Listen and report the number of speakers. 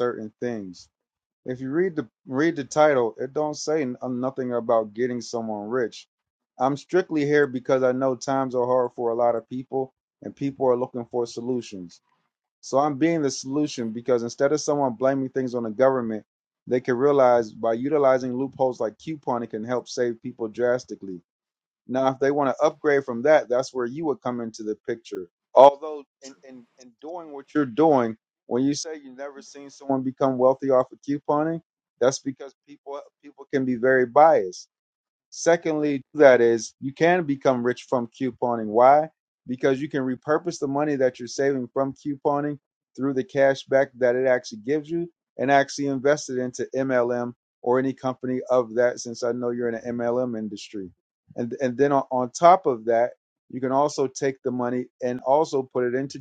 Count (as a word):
one